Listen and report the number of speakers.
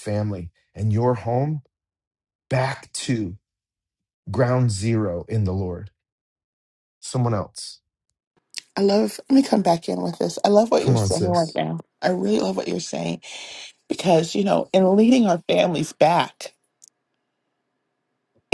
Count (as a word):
two